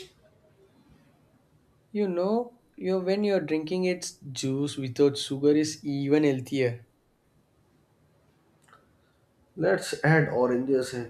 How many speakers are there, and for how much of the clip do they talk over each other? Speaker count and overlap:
2, no overlap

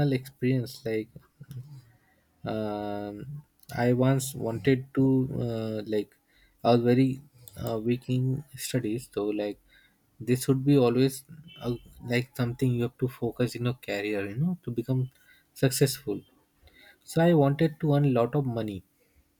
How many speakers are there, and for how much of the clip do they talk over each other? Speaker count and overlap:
1, no overlap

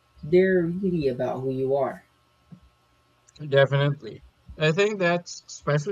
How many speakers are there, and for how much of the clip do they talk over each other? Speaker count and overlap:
2, no overlap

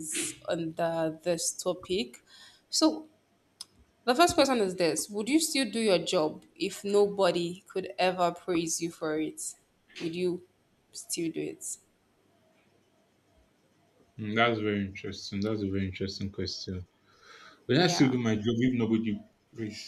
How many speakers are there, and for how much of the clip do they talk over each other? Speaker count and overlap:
2, about 2%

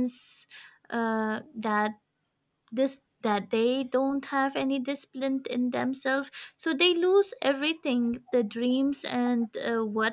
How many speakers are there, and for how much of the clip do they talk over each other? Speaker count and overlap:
1, no overlap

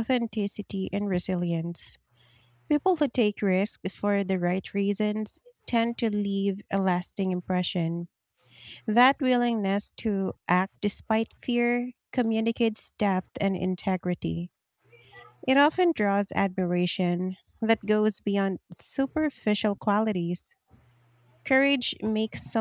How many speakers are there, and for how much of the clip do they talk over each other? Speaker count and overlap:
1, no overlap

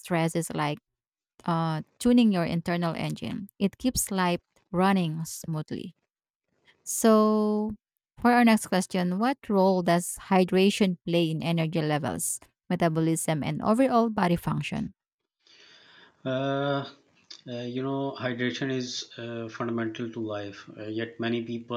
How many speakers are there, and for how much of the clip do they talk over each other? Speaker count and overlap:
2, no overlap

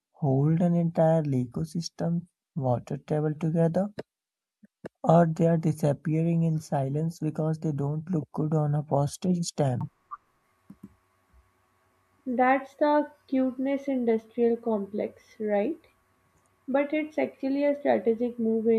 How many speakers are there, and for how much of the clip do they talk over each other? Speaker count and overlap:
2, no overlap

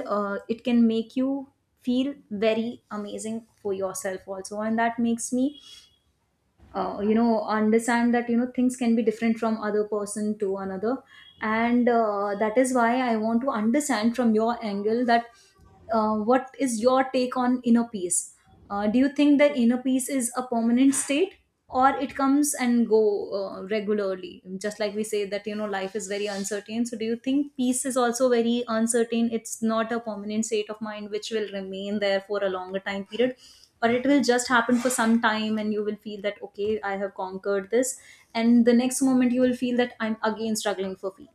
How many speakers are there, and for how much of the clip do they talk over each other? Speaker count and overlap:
1, no overlap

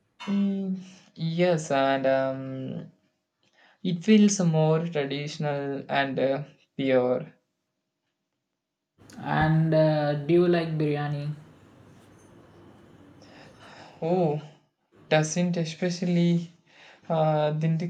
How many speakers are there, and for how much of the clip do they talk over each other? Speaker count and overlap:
2, no overlap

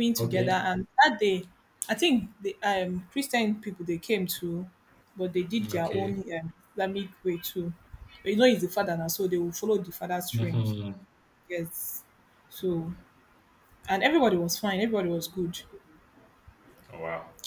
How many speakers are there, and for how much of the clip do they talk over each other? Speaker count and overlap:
2, about 7%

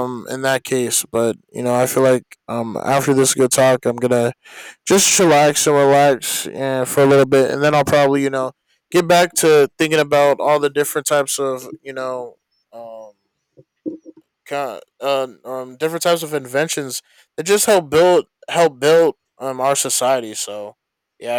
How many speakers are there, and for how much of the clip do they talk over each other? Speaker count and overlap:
1, no overlap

